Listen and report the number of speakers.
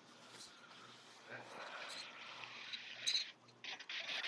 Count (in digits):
0